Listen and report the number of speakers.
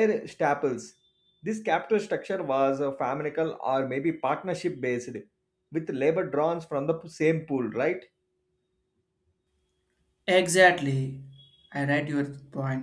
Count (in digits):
2